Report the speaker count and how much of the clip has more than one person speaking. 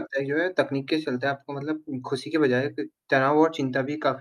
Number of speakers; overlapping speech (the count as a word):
one, no overlap